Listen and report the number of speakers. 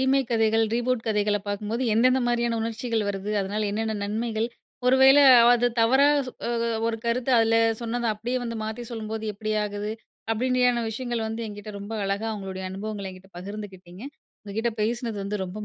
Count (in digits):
1